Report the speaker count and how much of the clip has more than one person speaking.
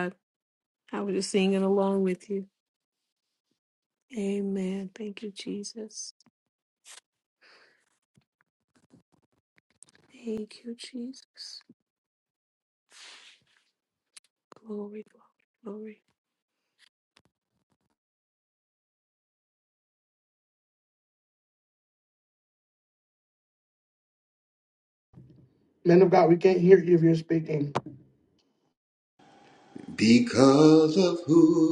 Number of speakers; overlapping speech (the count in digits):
3, no overlap